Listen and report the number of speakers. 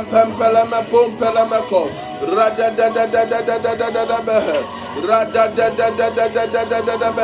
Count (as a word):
two